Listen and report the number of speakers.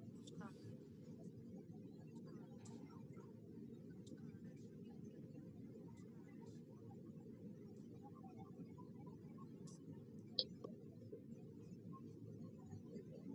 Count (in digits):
0